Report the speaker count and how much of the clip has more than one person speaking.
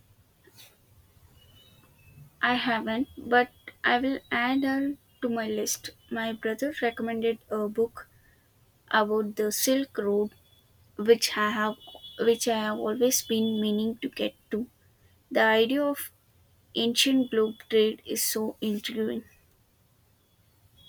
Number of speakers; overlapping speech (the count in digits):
1, no overlap